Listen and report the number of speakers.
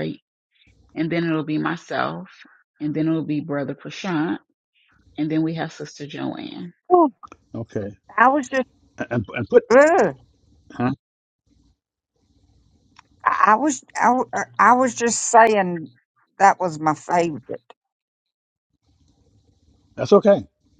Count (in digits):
3